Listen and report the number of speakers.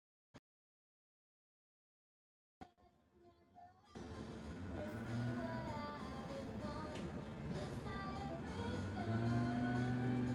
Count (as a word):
zero